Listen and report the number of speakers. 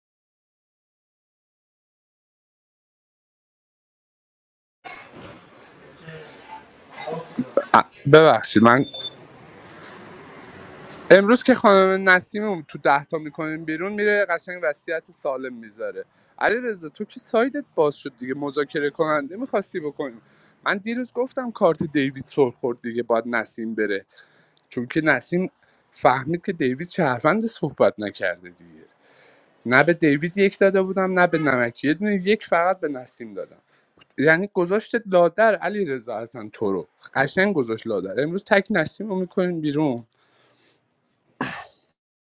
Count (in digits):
1